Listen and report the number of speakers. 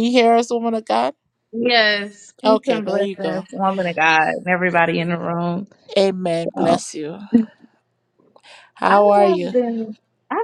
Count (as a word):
two